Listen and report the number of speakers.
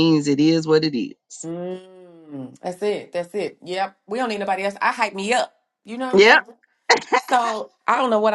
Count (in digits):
2